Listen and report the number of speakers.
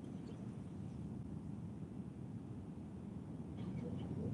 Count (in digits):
0